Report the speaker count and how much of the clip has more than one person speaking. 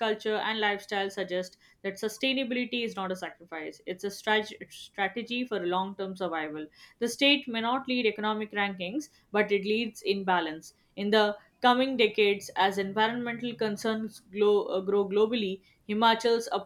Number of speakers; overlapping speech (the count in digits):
1, no overlap